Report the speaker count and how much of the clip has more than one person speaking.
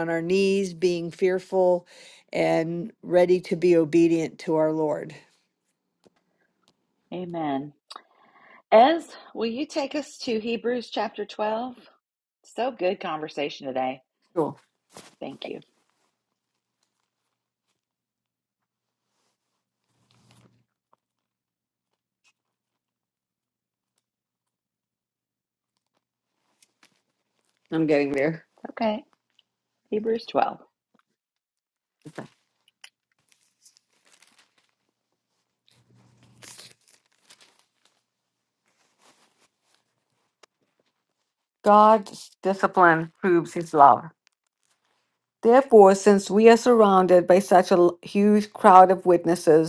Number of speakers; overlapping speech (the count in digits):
3, no overlap